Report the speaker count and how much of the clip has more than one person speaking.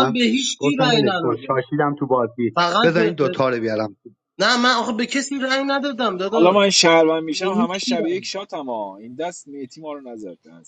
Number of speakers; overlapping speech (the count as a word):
three, about 24%